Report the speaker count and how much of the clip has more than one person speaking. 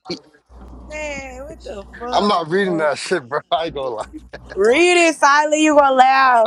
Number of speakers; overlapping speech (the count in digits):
2, about 12%